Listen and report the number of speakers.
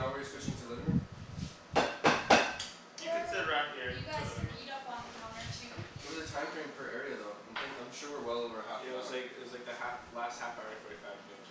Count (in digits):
4